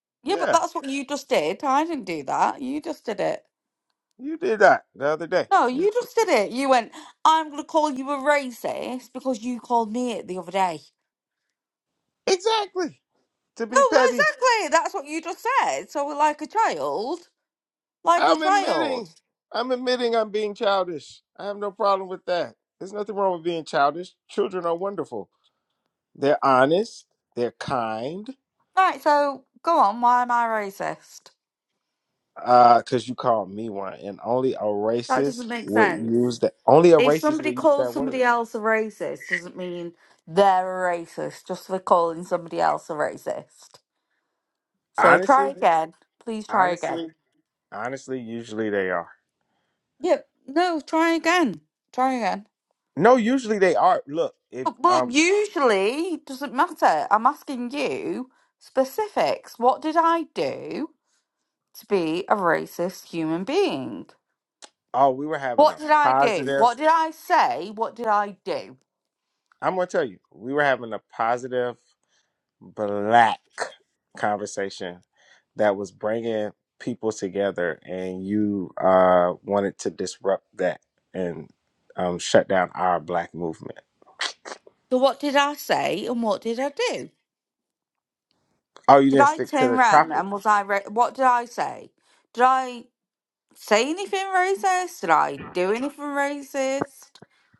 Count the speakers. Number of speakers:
two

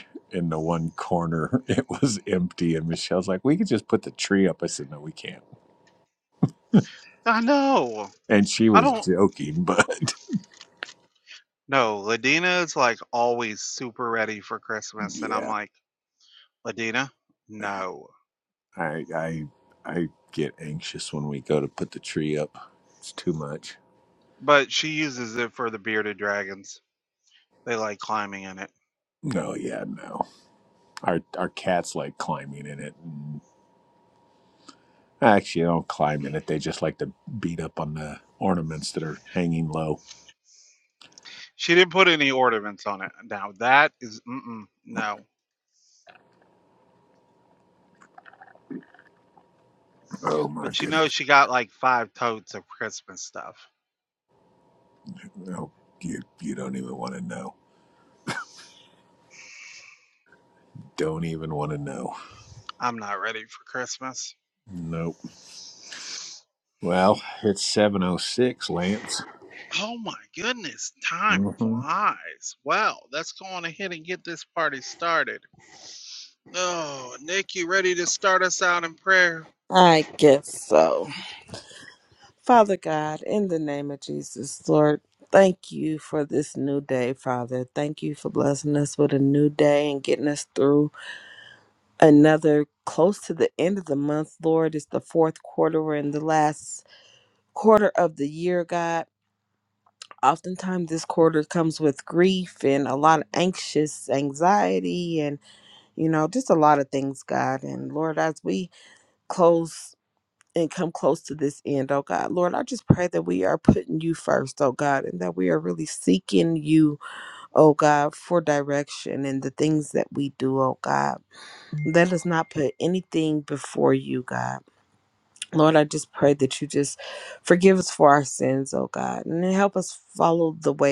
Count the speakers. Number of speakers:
three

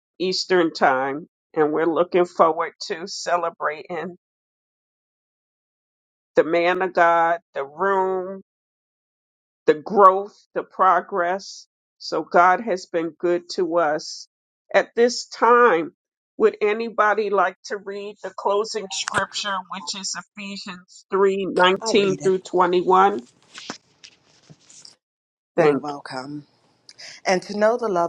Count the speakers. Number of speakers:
two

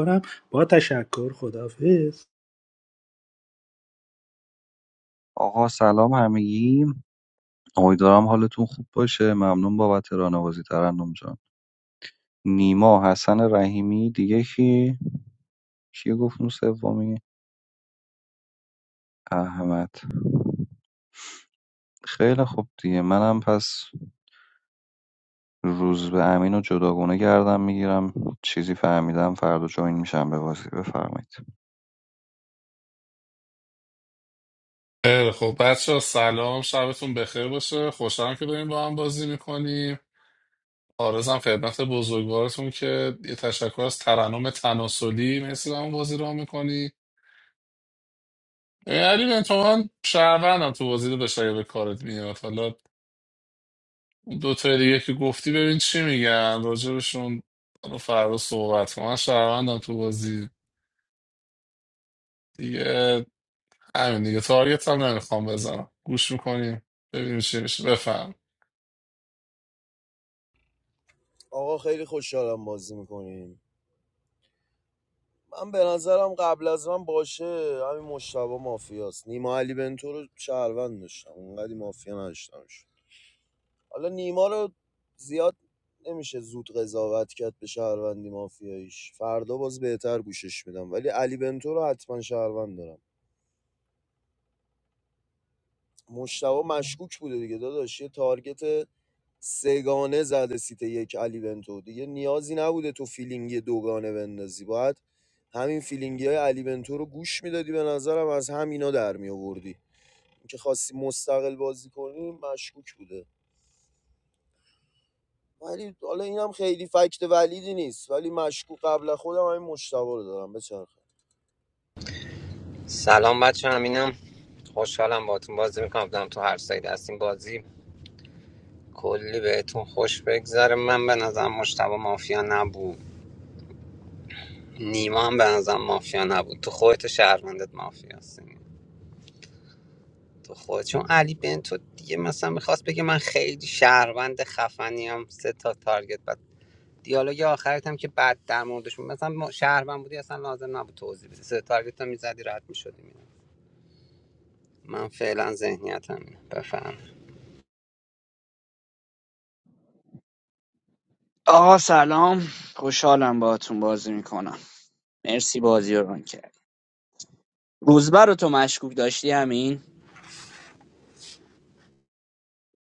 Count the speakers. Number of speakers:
six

